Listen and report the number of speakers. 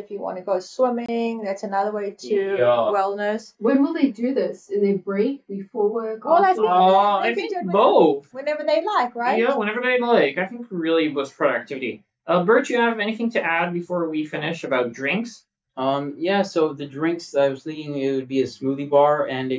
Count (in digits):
4